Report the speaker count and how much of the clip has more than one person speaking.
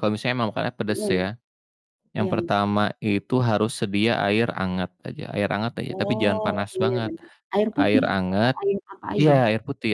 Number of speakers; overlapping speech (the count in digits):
2, about 29%